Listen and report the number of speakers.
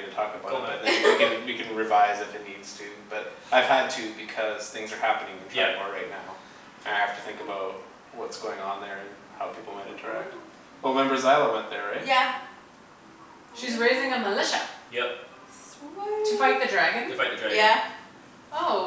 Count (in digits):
4